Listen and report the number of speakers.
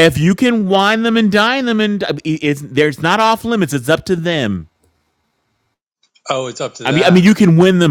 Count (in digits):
2